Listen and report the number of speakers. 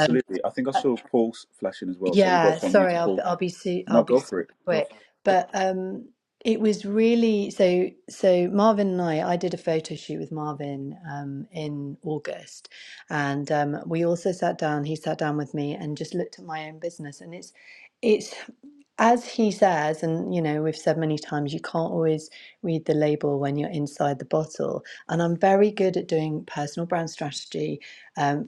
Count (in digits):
2